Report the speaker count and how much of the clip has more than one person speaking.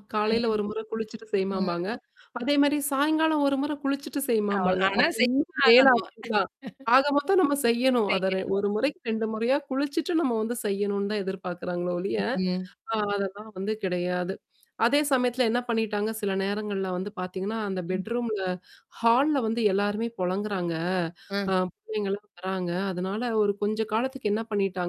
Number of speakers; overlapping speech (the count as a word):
two, about 10%